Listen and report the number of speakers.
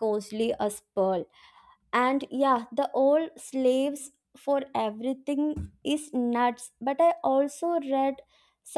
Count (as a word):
one